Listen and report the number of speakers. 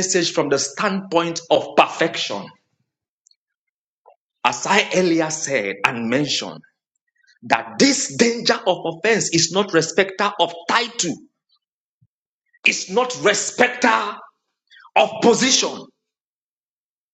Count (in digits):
1